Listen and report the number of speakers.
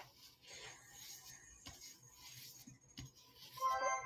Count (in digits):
0